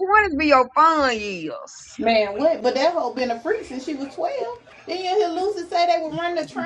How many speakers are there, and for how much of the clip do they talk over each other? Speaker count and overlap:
2, no overlap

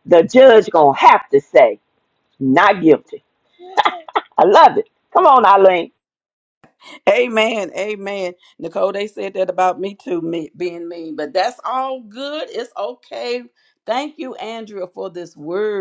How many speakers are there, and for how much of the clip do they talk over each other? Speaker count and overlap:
2, no overlap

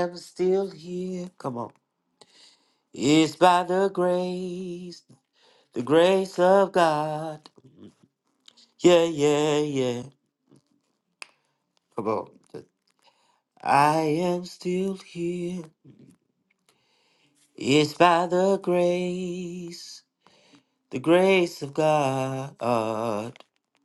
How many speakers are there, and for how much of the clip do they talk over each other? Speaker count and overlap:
1, no overlap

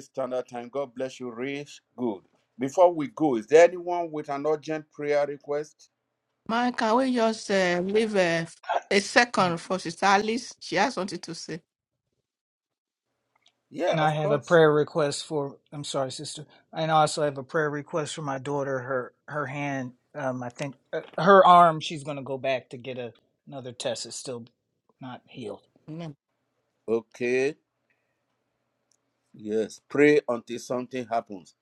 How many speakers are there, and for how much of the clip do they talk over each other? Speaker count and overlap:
3, about 2%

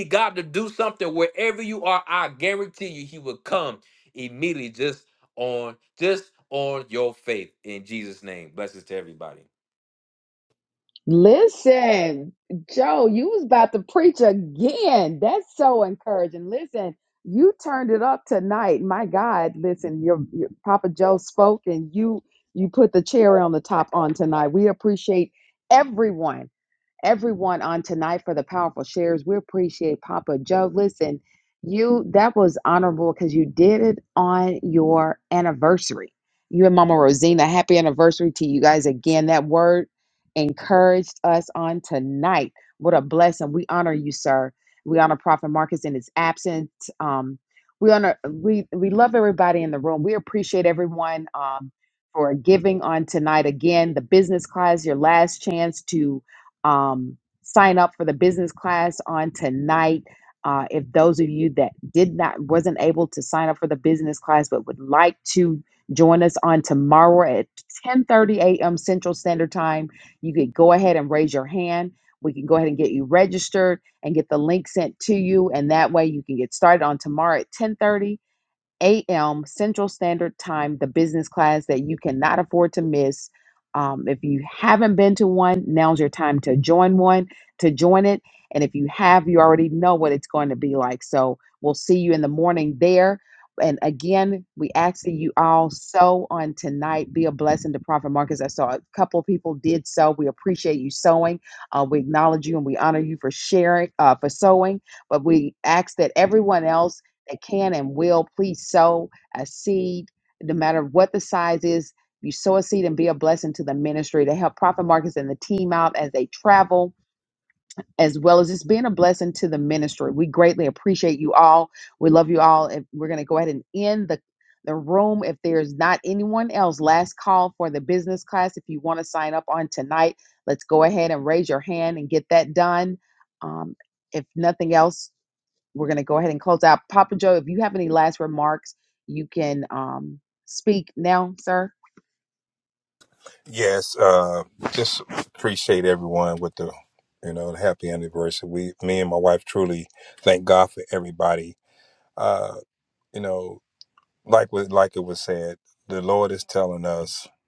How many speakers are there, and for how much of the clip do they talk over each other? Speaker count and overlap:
3, no overlap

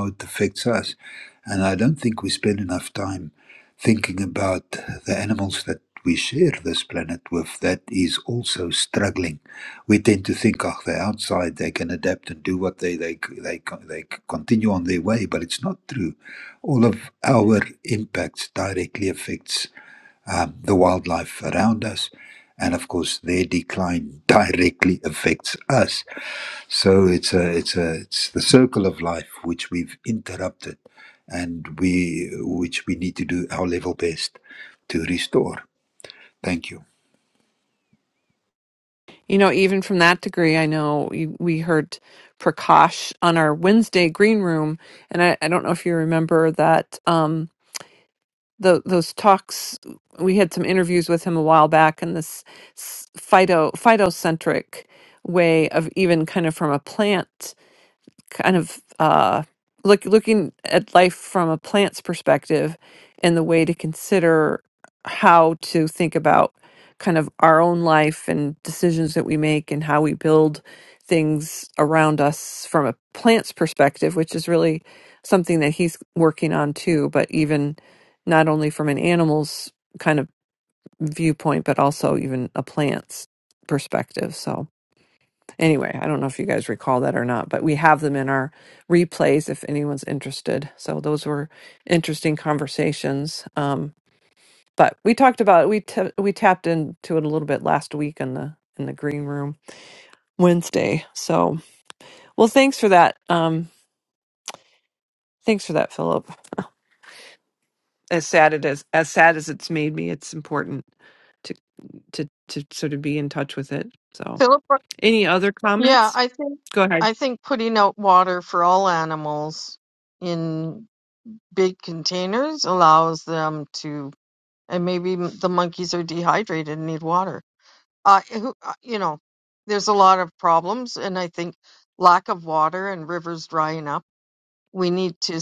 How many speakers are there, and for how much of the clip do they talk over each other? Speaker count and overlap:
3, under 1%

